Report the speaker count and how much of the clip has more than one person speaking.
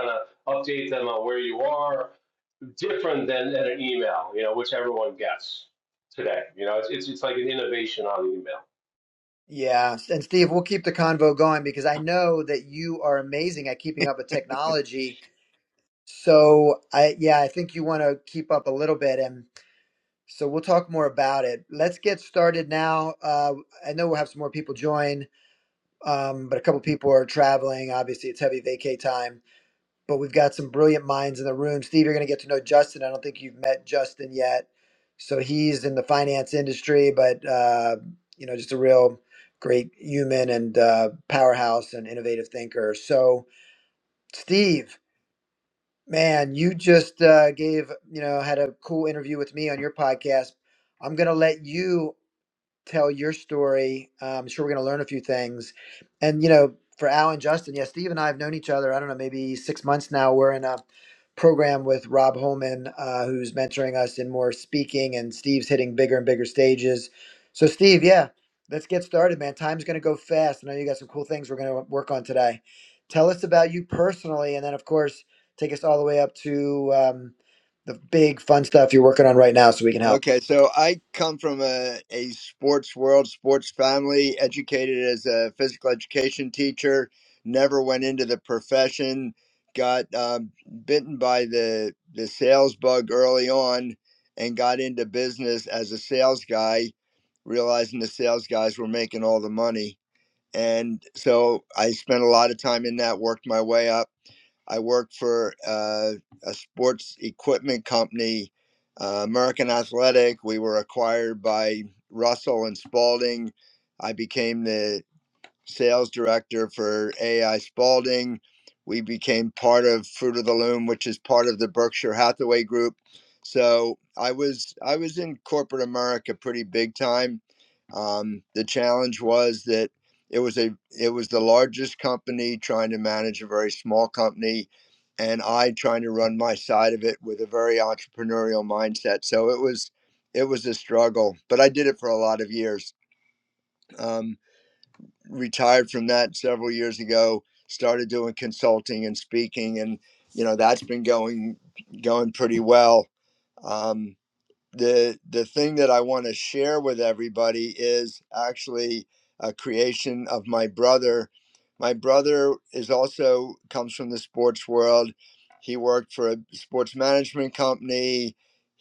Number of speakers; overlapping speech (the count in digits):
3, under 1%